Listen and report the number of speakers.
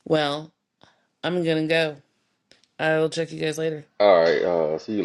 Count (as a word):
two